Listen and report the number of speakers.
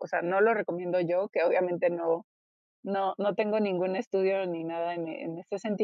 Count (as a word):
one